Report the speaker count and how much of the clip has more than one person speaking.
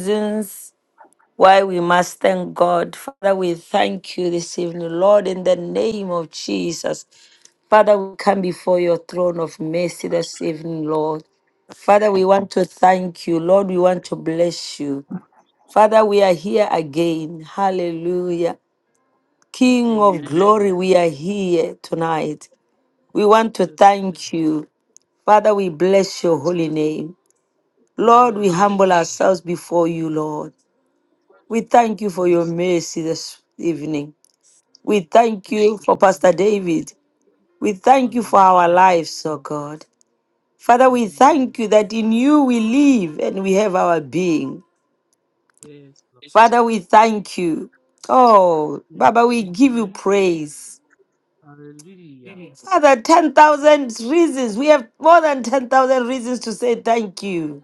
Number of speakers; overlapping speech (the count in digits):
2, about 11%